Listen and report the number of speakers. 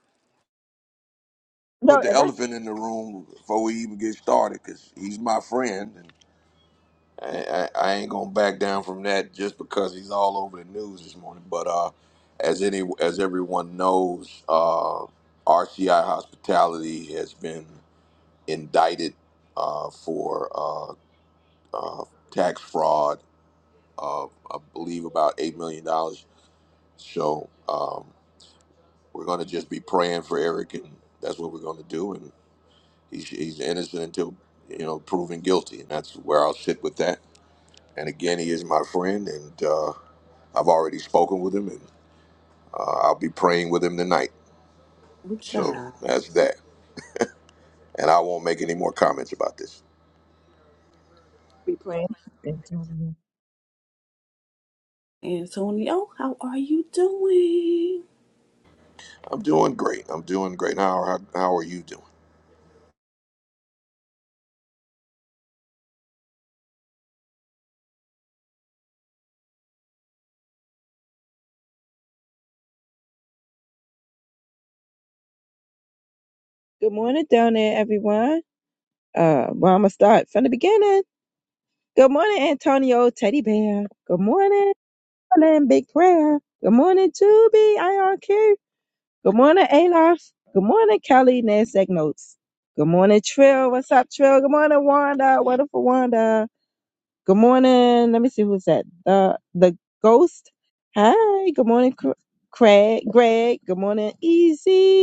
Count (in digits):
3